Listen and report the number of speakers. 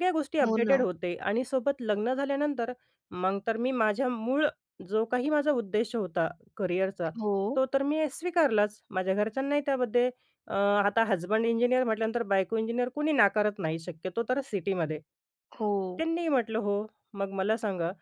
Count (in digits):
2